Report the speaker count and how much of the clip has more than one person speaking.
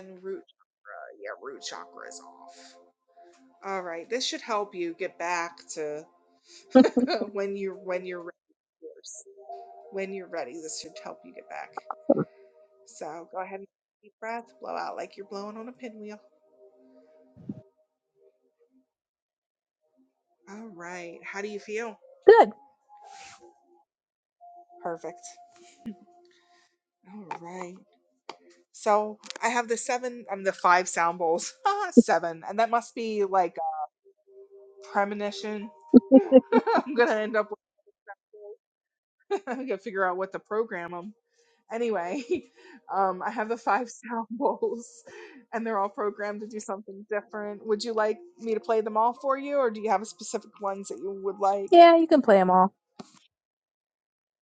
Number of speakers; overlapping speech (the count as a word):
two, under 1%